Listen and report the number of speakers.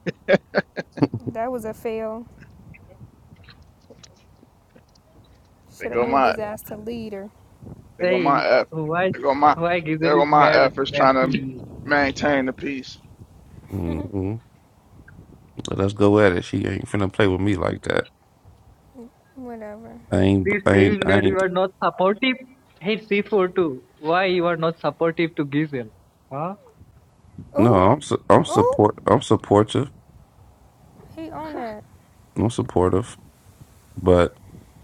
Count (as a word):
four